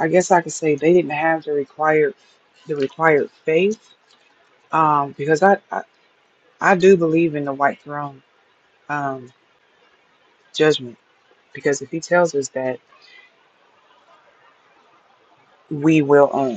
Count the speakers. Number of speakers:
1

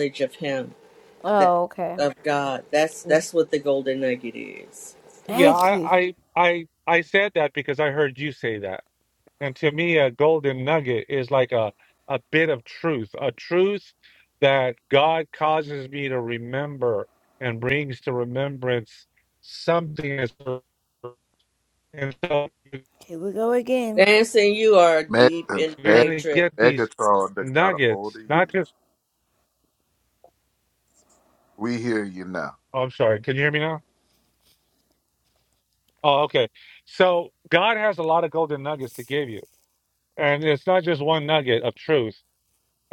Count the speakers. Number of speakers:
4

